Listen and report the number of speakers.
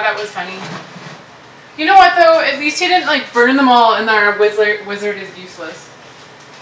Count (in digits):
1